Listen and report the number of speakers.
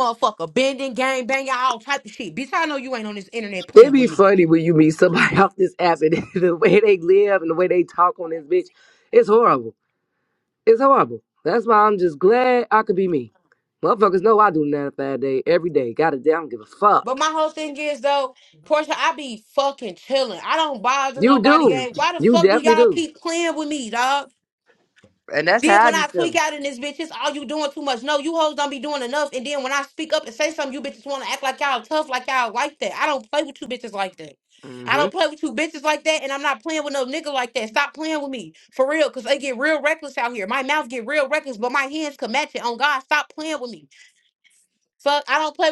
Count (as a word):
two